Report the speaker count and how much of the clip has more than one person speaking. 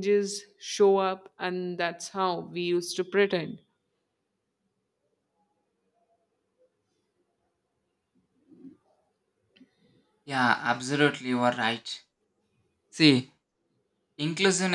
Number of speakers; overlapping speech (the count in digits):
2, no overlap